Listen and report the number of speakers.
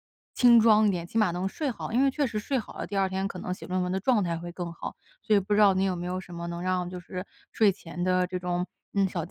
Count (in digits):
1